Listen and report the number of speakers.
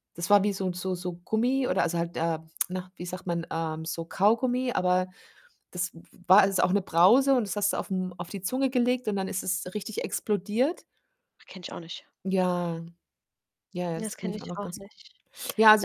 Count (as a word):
two